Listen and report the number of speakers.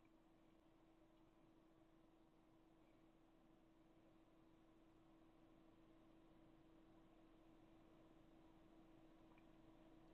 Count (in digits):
0